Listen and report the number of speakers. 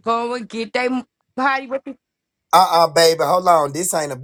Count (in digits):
2